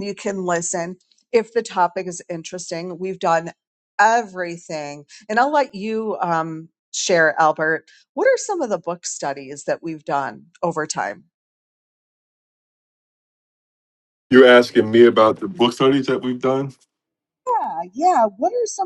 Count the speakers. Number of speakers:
2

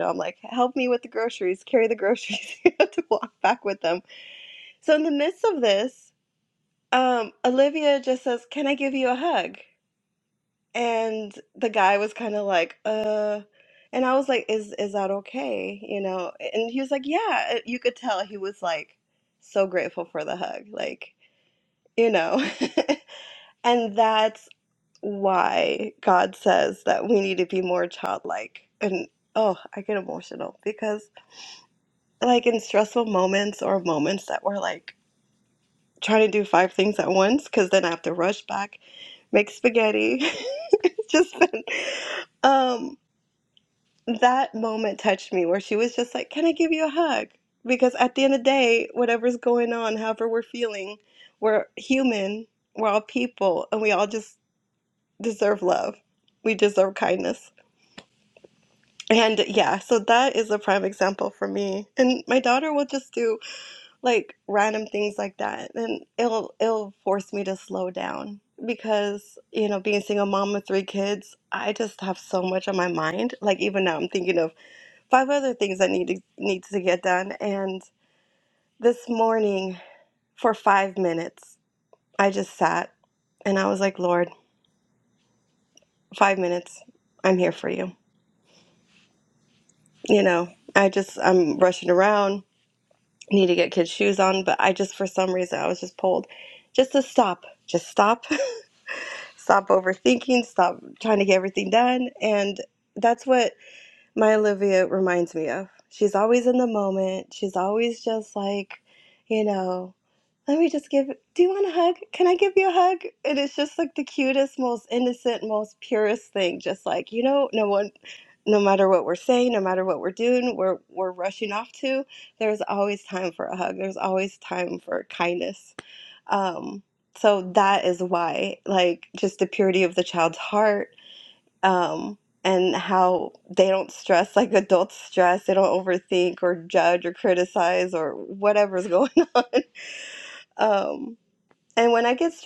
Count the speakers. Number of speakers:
1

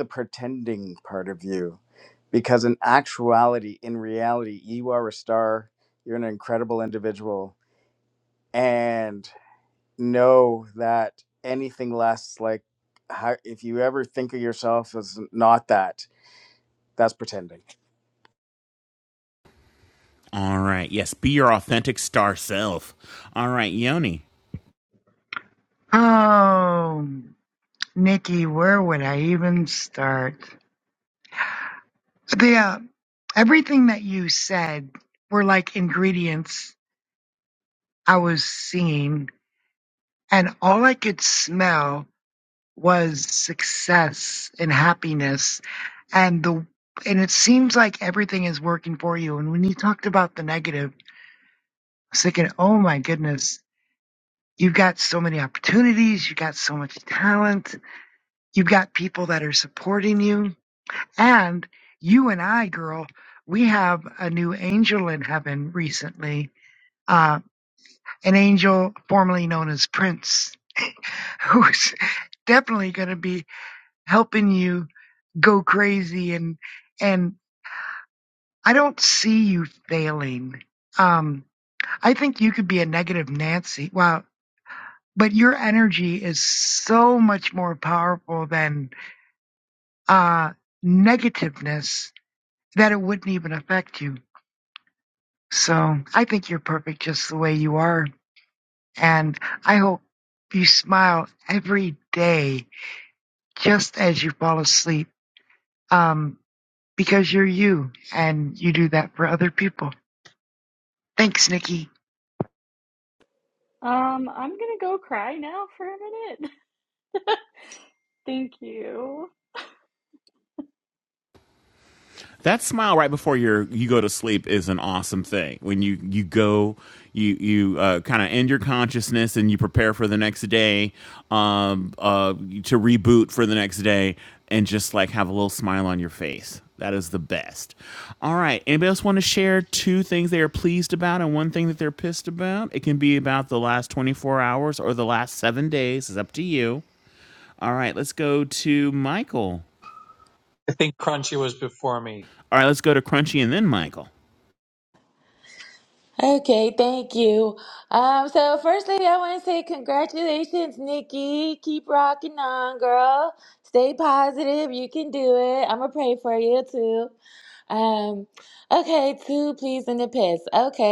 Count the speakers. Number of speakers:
6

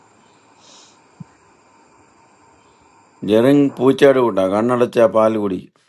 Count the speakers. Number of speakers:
1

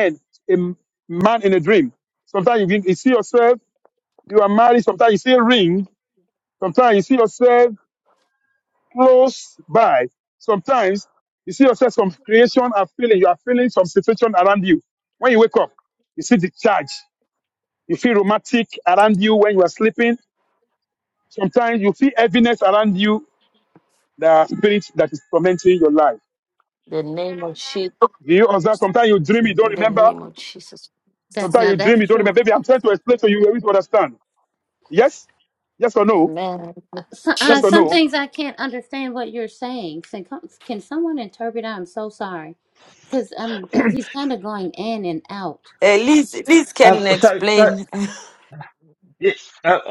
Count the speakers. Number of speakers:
4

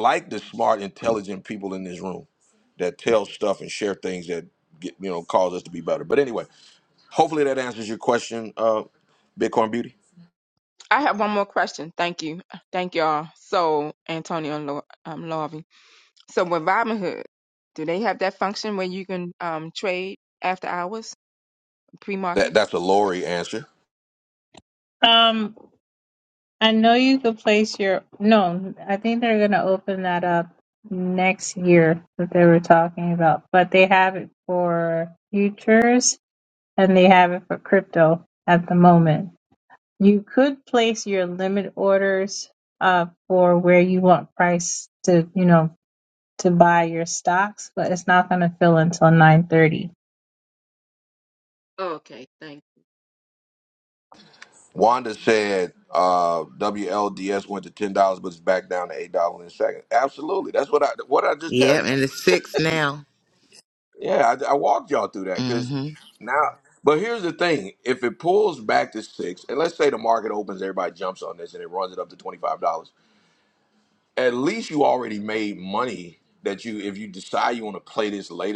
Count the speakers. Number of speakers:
4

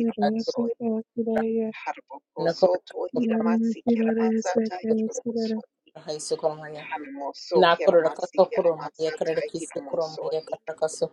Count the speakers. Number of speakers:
3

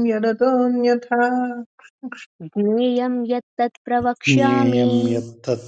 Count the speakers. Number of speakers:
3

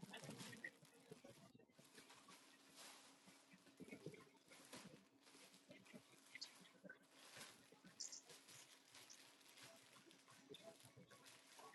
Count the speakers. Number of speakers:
0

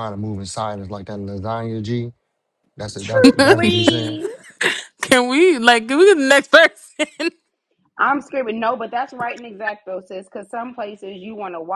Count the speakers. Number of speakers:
3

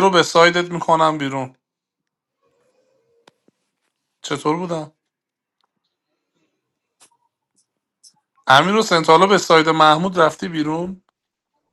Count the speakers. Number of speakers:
1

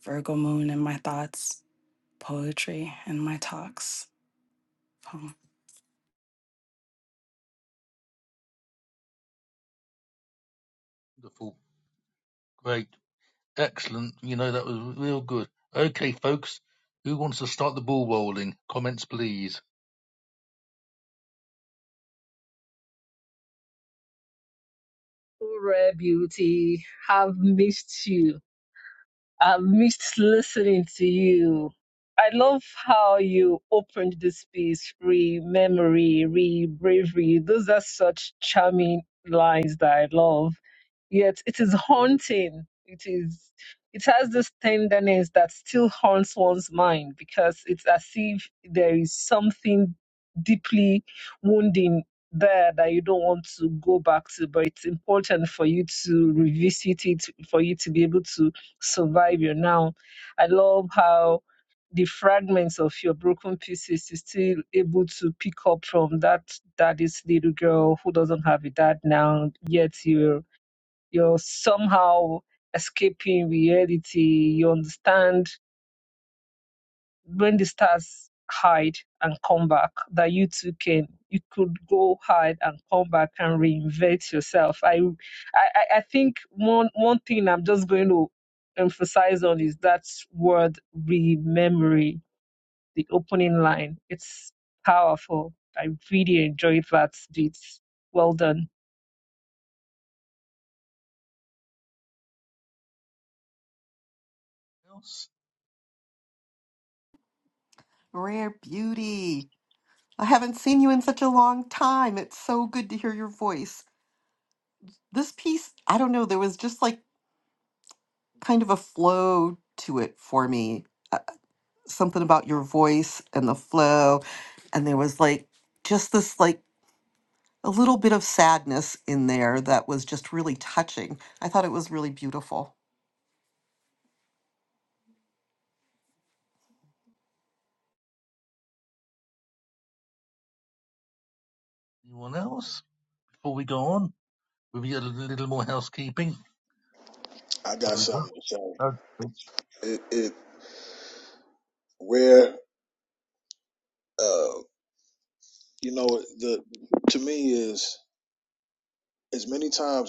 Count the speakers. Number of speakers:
5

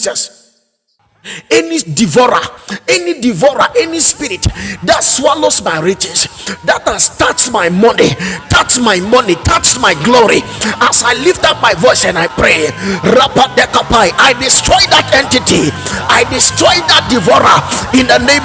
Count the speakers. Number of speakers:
1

